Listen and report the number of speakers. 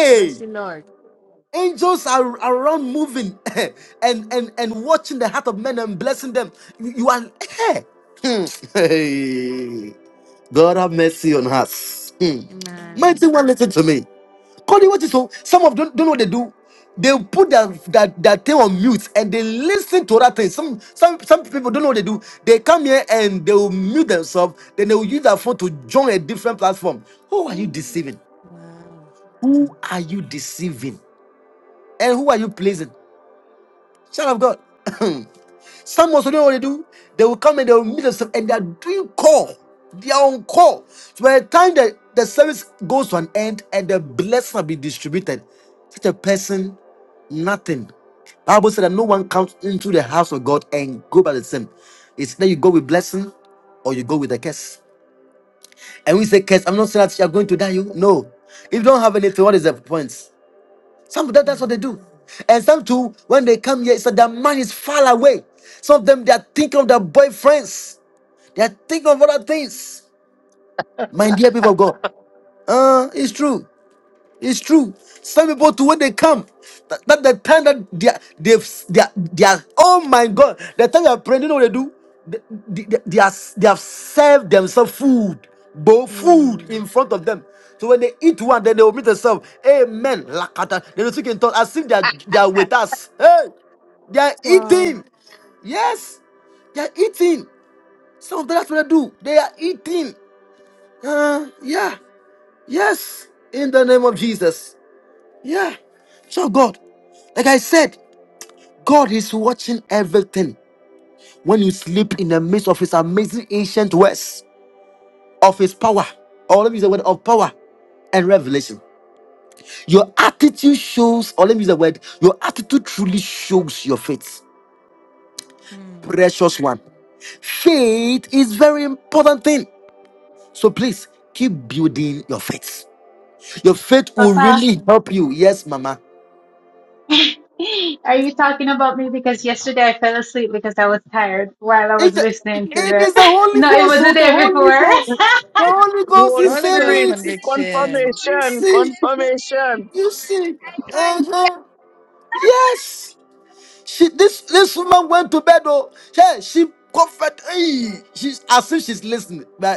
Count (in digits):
4